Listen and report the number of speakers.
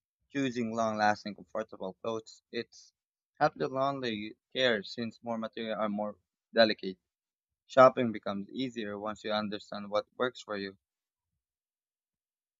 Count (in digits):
1